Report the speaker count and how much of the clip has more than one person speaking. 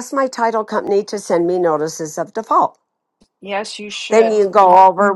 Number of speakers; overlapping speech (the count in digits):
2, about 6%